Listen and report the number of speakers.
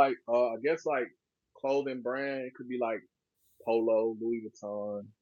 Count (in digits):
1